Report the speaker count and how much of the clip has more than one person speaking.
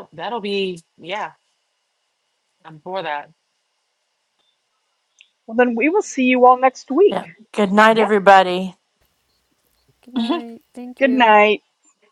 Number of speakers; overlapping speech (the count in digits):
4, about 7%